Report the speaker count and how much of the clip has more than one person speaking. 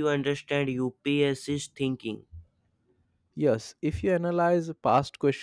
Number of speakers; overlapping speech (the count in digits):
2, no overlap